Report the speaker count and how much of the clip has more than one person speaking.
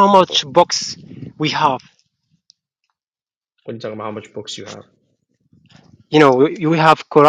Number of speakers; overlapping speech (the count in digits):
2, no overlap